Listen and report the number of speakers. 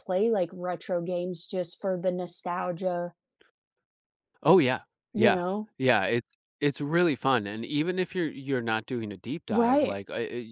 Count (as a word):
two